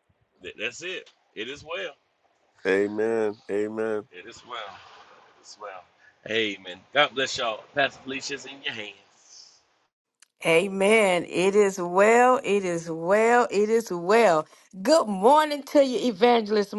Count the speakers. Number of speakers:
3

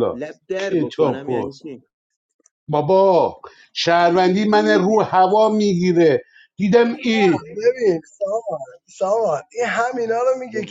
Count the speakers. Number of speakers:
3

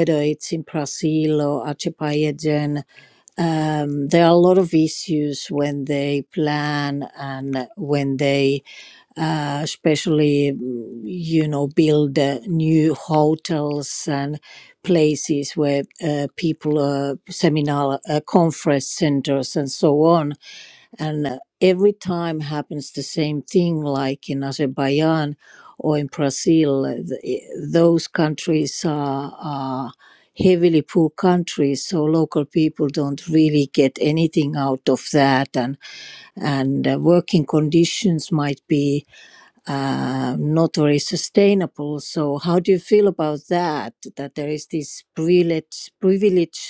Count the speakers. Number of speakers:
1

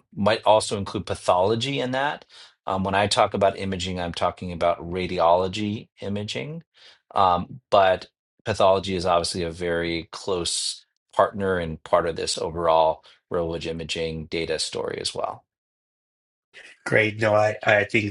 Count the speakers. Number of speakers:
2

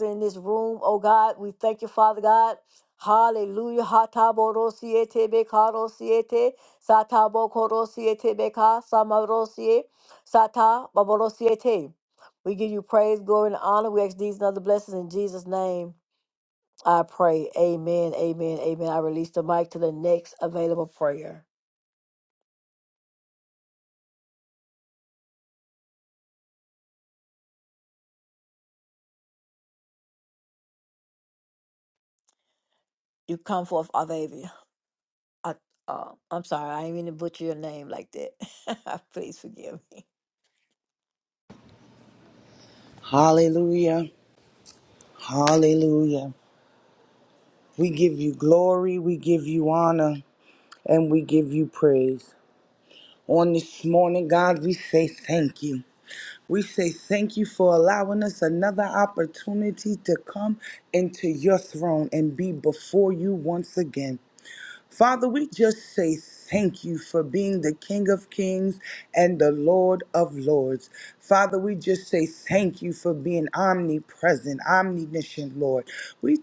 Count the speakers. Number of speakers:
2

